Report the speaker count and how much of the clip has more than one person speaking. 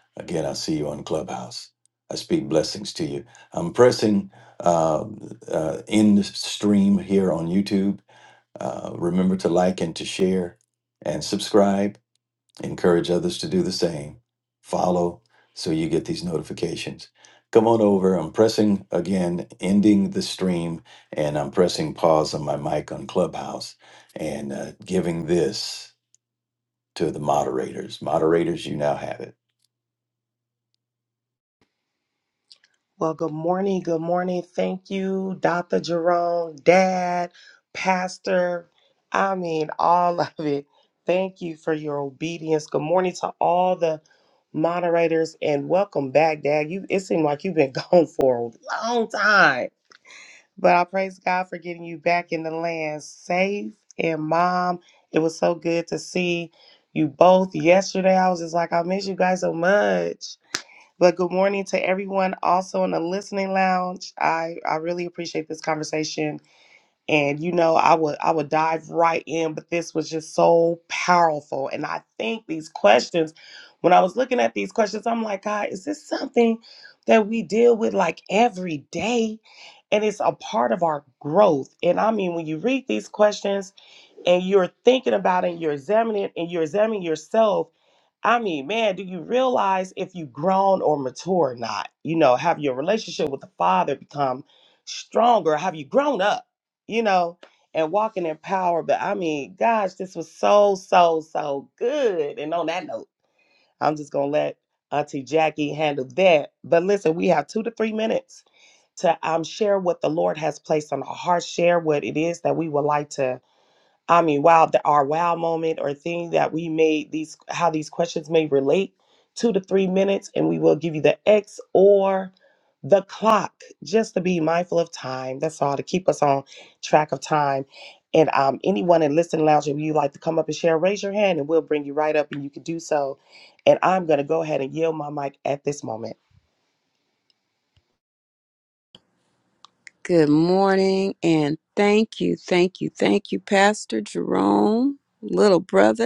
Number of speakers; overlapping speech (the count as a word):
three, no overlap